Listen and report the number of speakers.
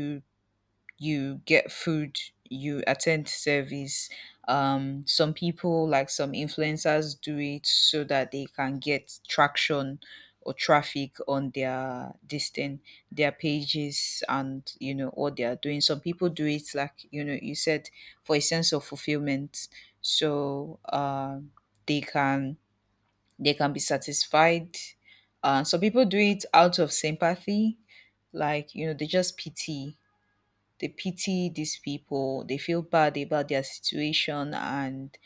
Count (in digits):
1